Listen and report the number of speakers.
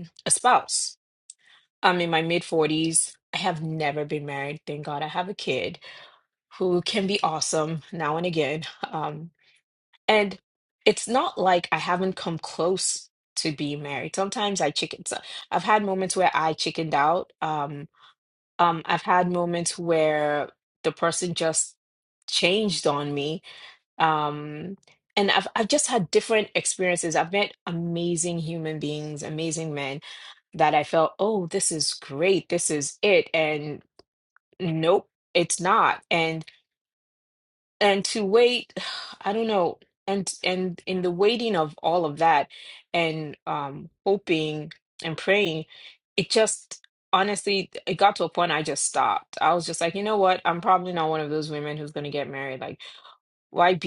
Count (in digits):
1